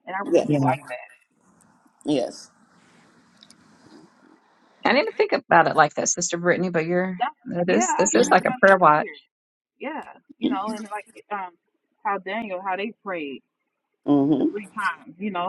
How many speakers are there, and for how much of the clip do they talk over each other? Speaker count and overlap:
3, about 13%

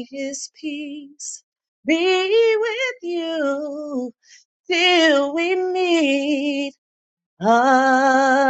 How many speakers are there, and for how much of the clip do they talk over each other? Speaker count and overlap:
1, no overlap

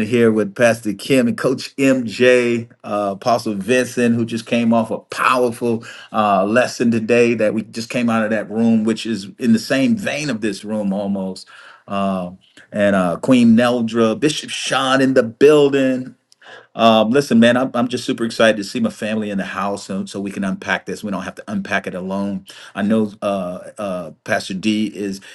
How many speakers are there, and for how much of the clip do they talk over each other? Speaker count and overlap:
1, no overlap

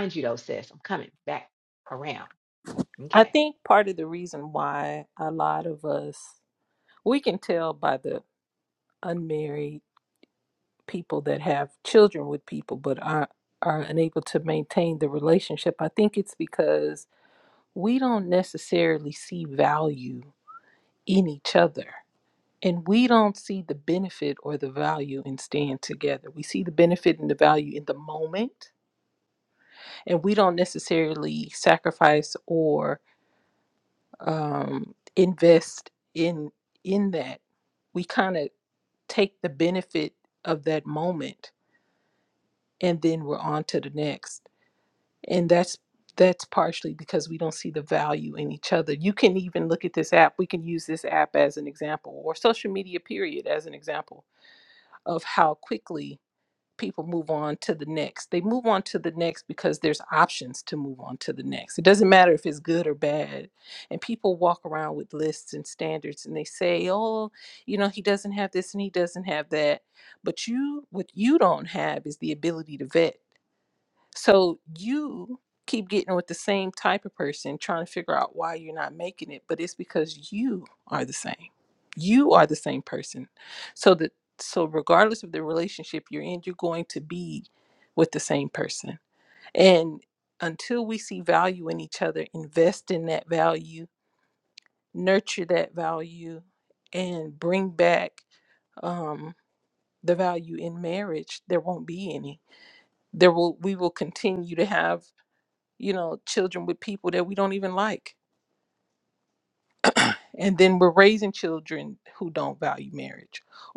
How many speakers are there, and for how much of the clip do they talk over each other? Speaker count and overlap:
2, under 1%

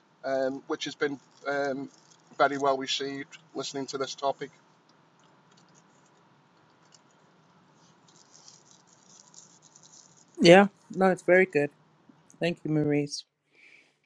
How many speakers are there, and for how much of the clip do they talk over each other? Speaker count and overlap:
2, no overlap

